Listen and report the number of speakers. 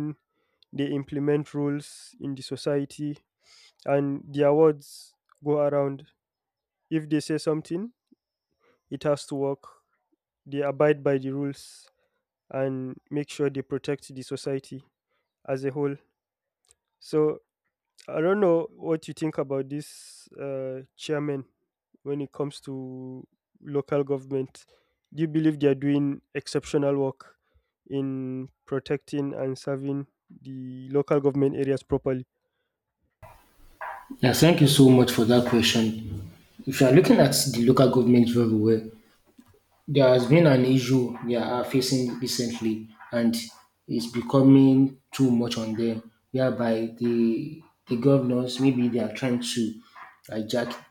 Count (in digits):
2